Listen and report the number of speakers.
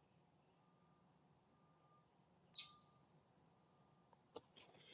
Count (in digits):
0